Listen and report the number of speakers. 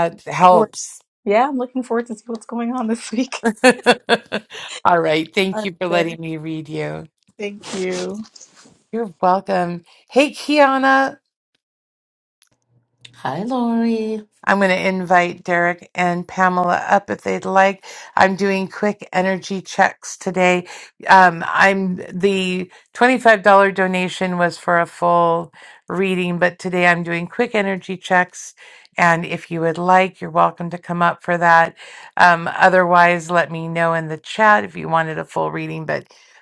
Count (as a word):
three